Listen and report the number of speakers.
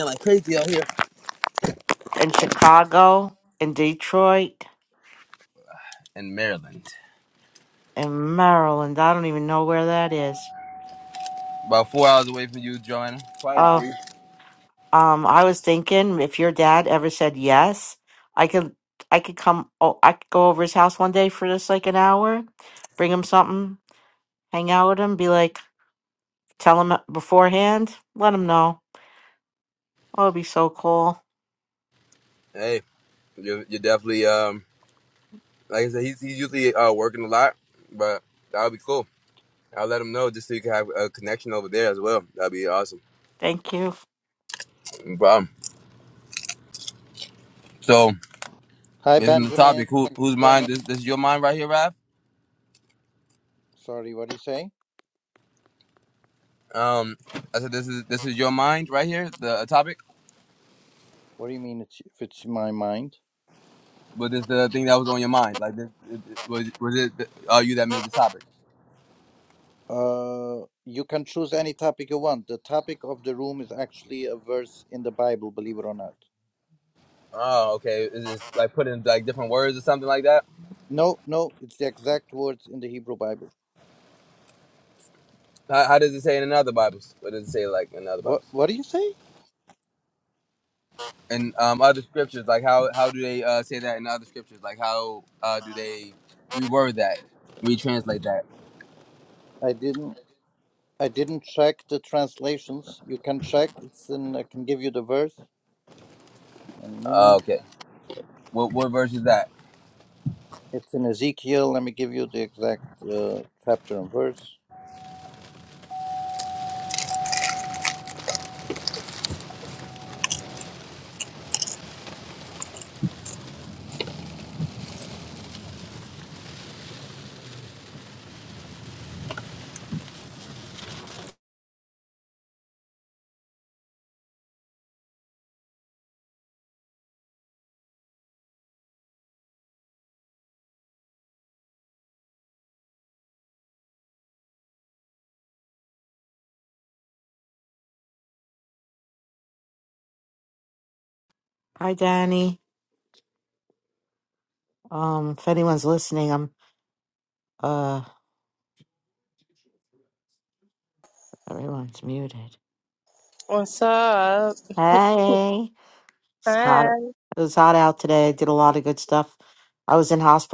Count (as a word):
four